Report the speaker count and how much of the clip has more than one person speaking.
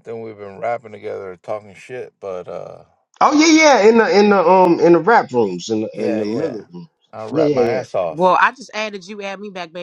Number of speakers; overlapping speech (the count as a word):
three, about 13%